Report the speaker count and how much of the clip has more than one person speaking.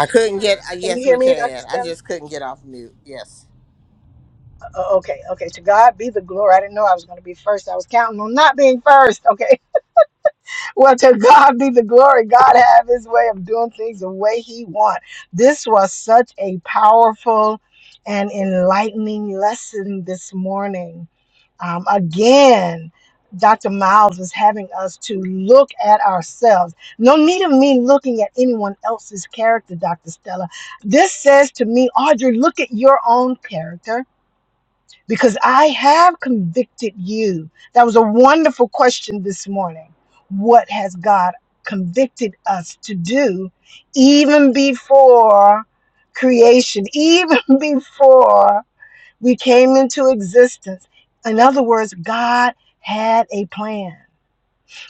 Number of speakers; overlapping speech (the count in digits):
2, about 2%